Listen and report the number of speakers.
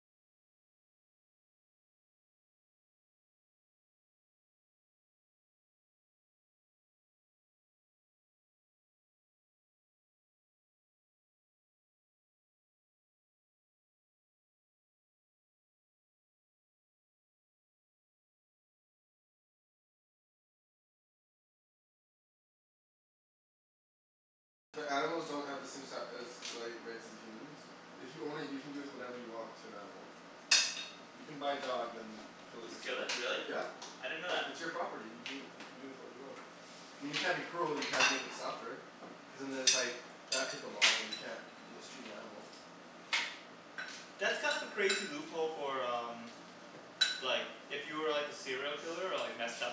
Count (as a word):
two